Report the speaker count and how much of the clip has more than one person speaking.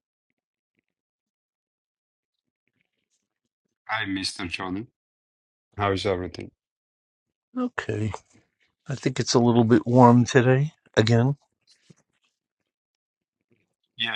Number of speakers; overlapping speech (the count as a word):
two, no overlap